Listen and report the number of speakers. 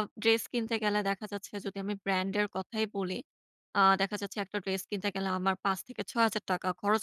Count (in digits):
1